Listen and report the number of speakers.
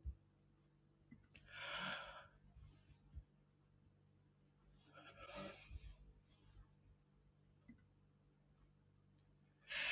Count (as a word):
zero